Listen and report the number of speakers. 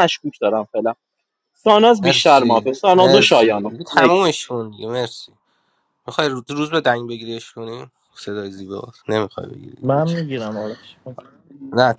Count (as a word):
three